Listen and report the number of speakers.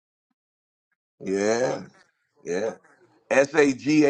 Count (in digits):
1